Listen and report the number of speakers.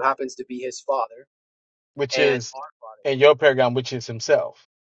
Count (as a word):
two